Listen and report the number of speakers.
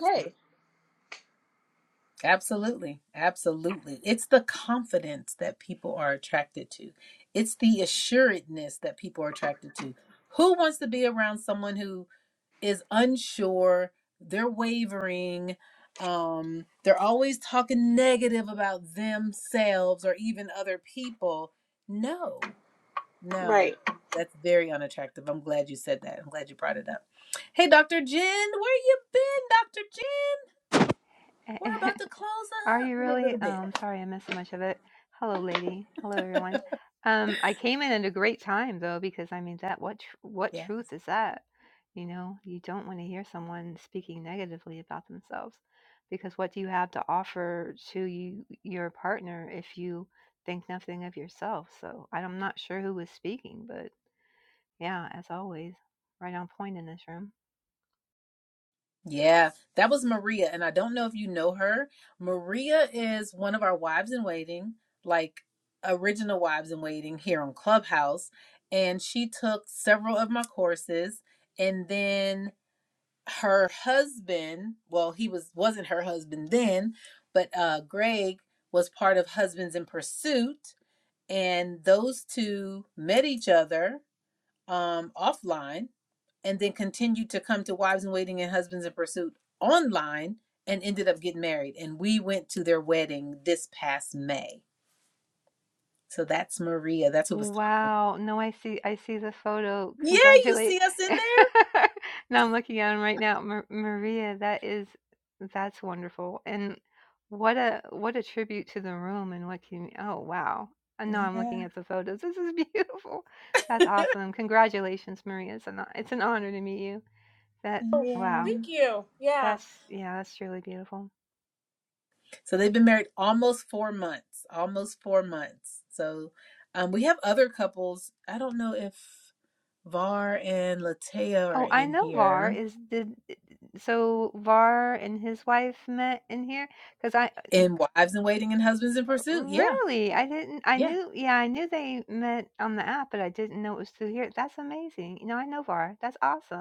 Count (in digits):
3